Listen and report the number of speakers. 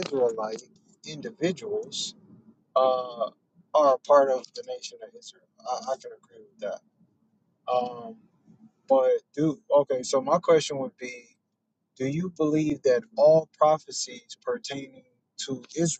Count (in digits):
1